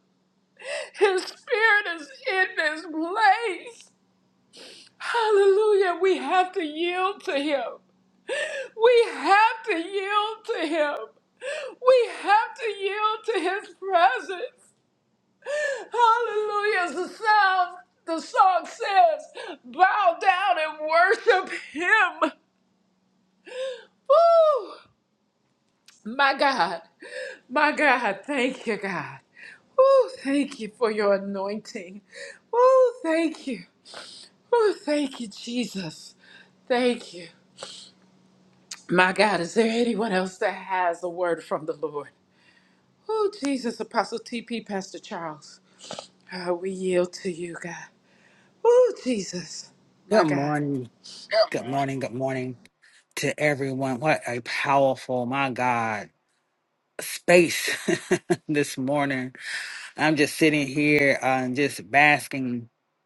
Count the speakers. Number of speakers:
2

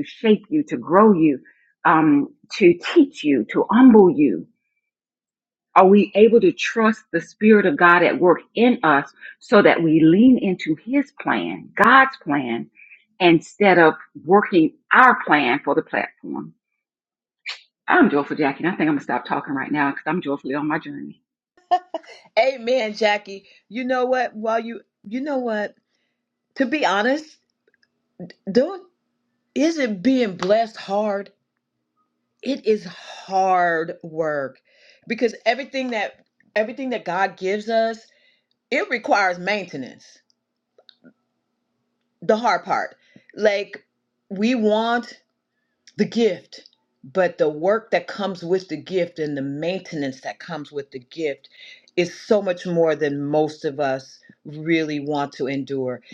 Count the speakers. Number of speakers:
2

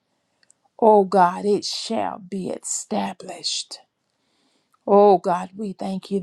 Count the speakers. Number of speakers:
1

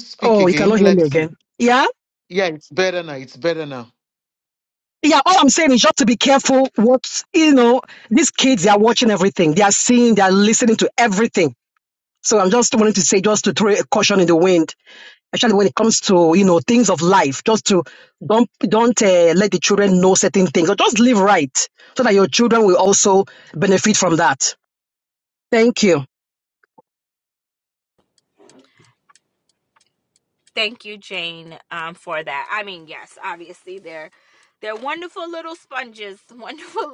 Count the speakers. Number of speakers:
3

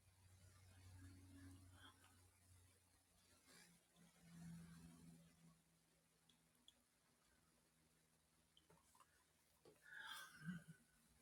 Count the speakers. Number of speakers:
0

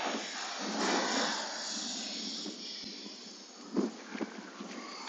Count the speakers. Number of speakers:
0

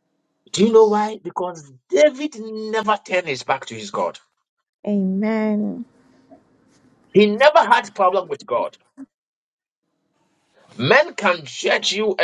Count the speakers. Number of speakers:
2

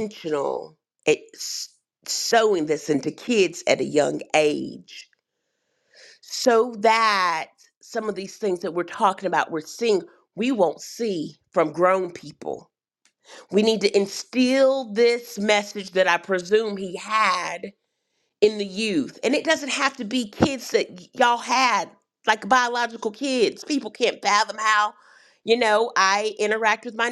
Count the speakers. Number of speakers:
1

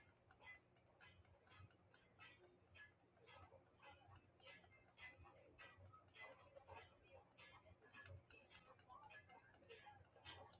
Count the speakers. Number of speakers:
0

